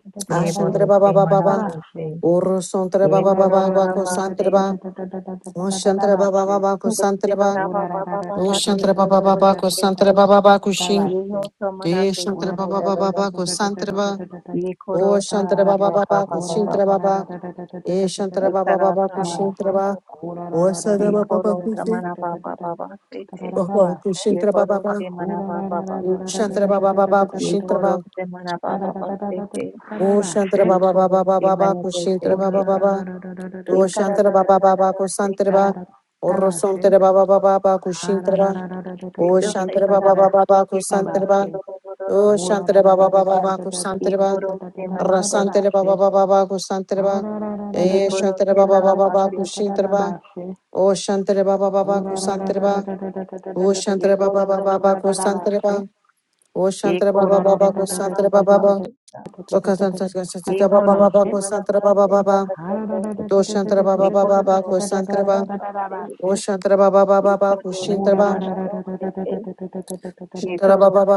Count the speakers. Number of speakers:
three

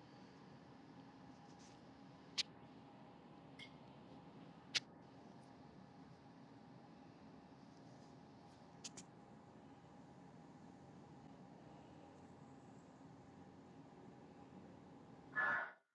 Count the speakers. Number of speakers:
zero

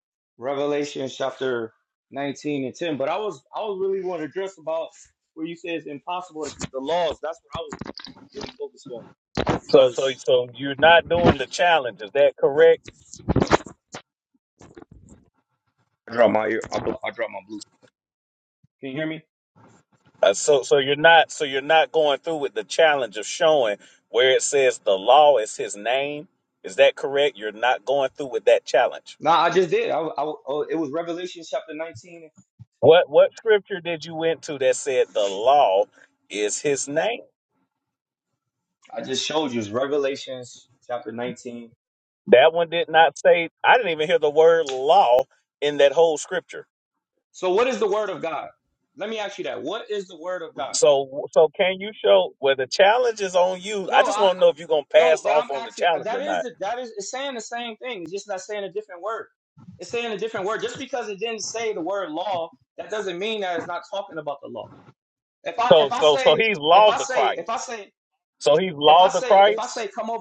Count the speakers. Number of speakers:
two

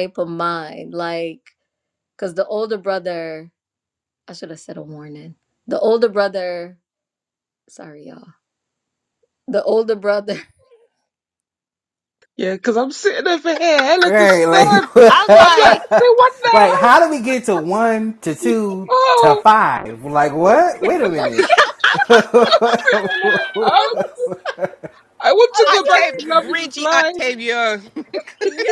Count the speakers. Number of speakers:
four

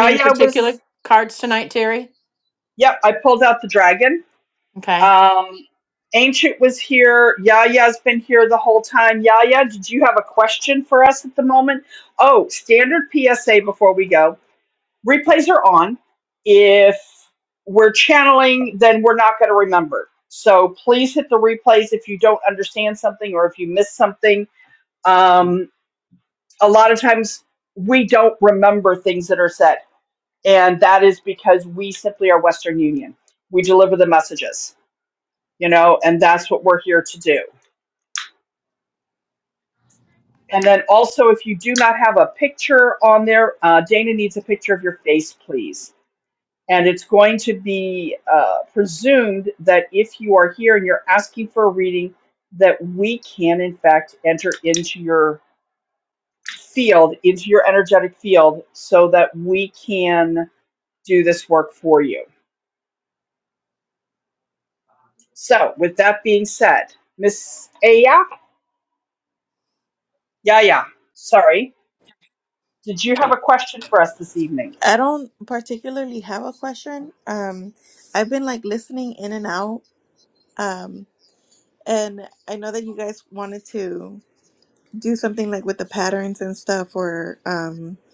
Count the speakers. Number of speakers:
three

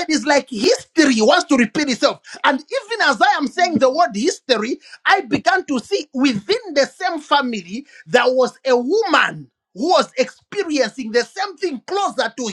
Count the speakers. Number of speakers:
one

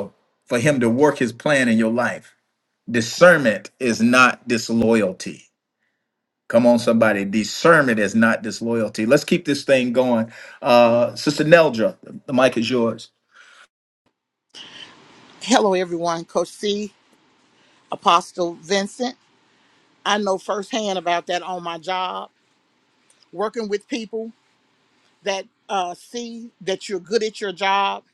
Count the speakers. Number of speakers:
two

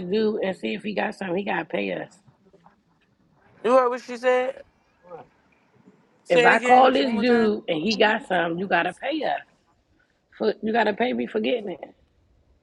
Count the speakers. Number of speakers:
two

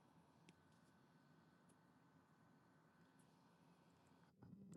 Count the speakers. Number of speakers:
zero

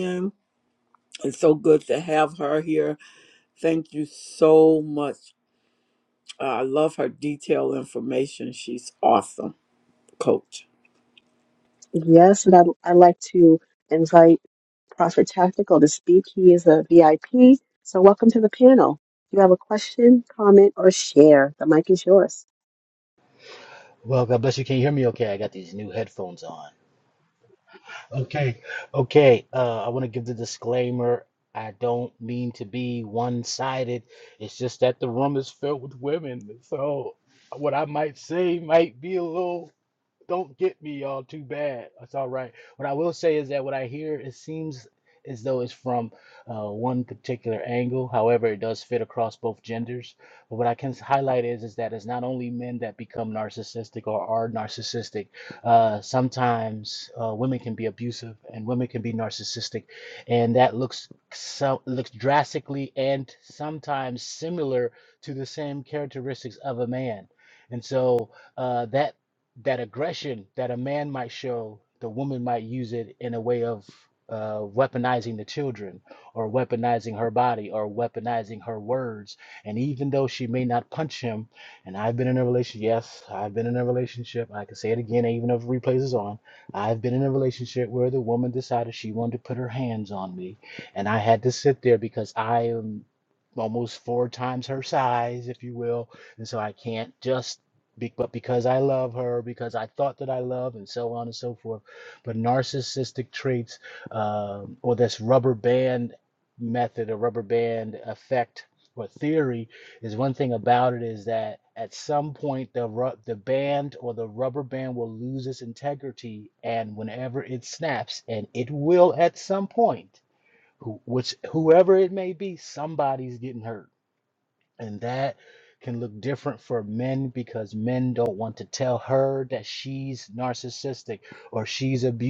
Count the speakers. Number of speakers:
three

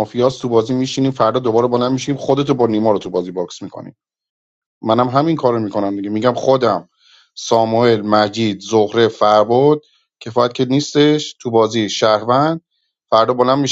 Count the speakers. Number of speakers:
one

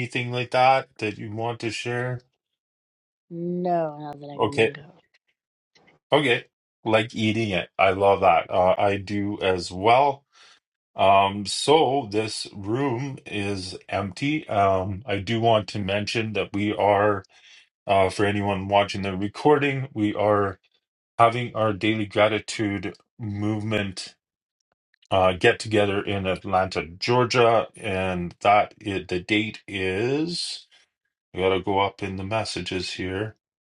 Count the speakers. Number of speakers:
two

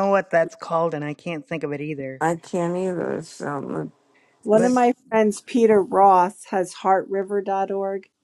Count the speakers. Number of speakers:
three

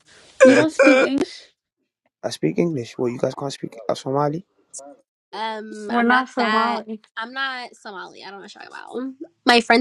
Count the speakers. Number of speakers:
three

